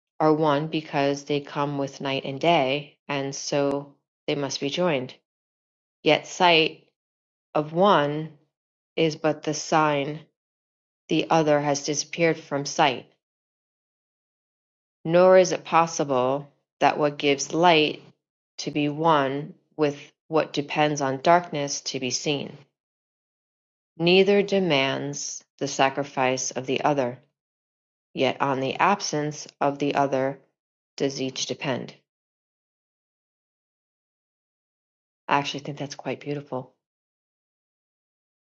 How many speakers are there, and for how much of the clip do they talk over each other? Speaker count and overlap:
one, no overlap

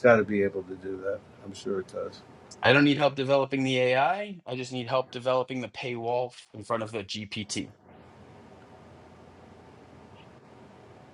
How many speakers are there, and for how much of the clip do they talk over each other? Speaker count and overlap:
two, no overlap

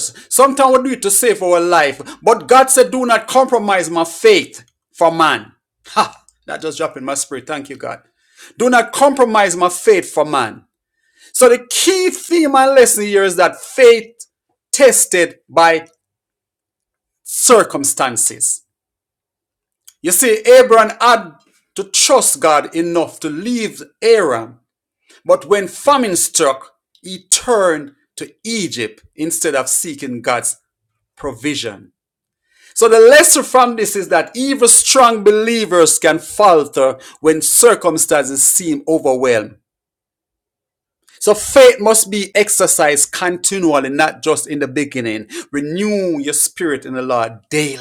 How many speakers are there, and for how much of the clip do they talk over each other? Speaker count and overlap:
one, no overlap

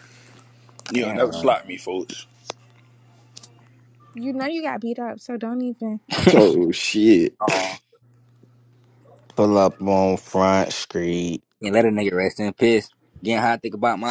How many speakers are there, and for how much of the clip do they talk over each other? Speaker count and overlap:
five, about 4%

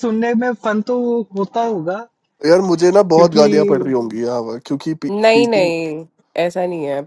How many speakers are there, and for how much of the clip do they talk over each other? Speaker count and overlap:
three, about 9%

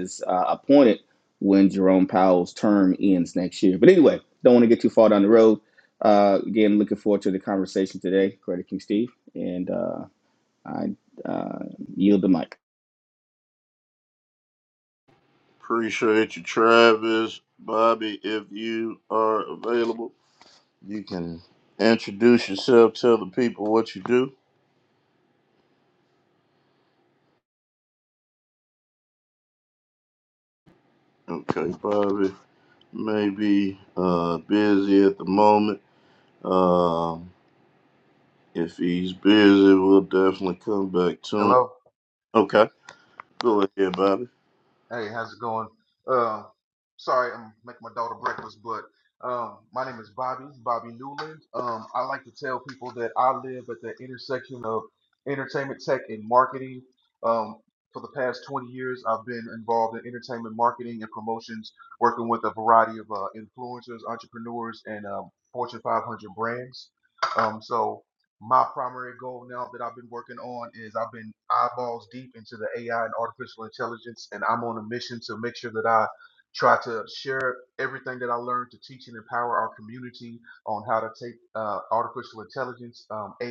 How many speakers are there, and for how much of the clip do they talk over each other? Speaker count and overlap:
three, under 1%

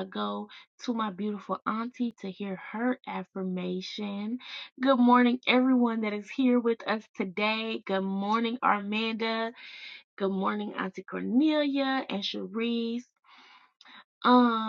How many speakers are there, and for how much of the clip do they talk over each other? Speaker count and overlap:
one, no overlap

